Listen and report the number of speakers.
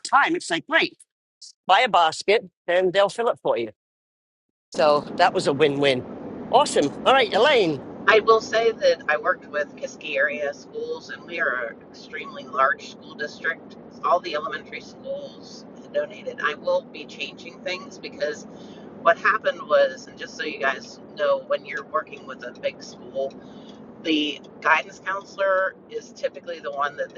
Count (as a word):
two